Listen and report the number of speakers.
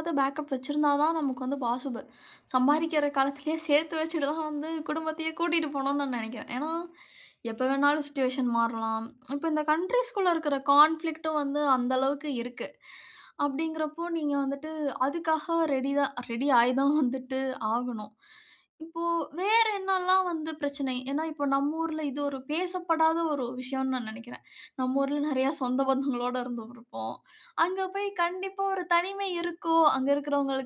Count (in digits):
1